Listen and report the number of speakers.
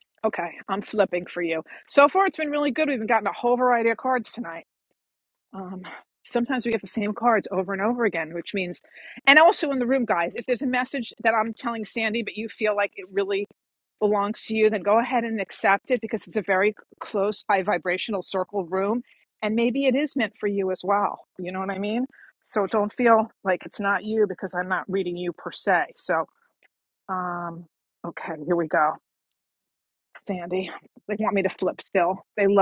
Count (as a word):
one